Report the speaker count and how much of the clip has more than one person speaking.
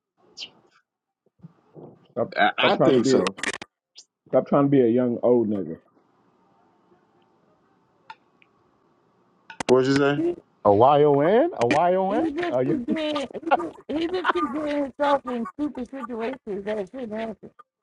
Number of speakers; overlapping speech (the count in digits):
4, about 7%